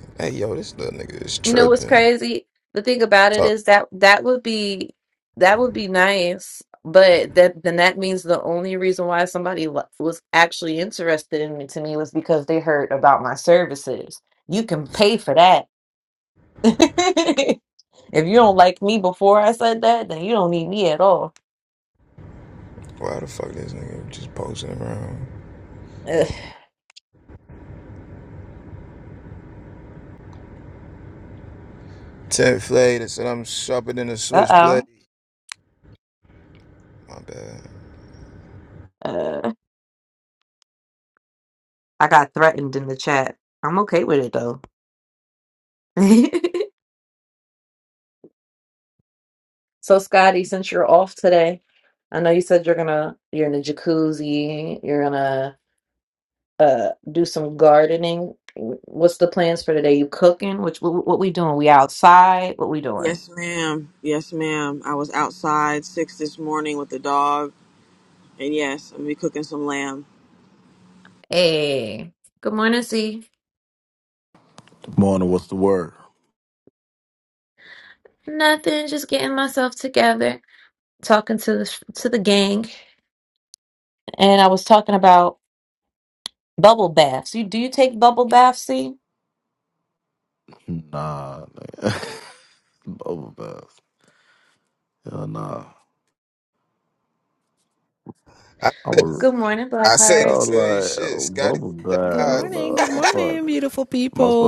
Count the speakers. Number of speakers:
five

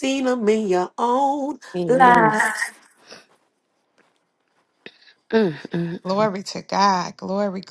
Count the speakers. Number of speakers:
three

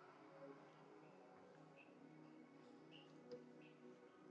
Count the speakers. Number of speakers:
zero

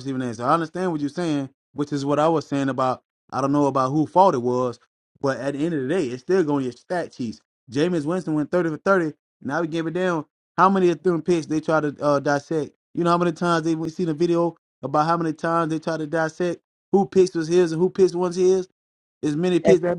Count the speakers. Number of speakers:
one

